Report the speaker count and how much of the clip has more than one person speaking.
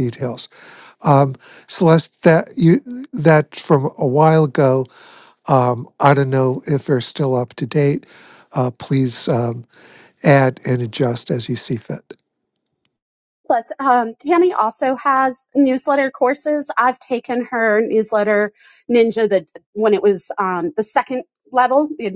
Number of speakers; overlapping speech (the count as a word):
two, no overlap